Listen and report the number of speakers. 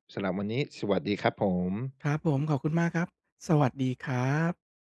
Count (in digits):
2